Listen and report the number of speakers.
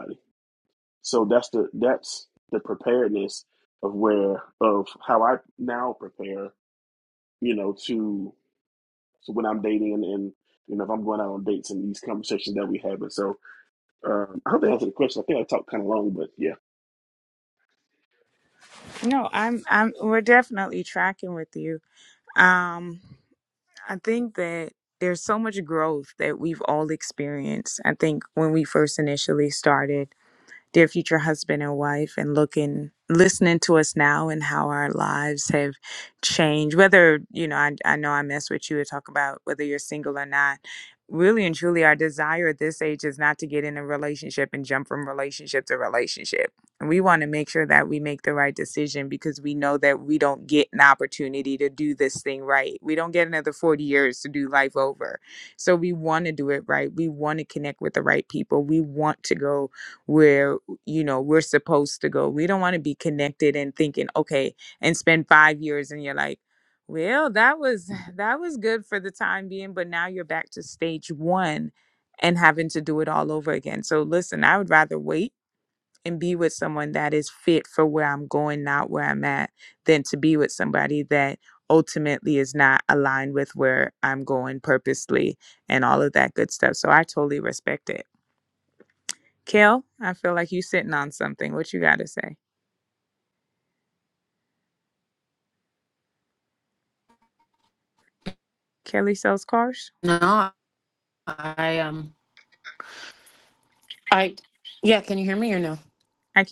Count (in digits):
3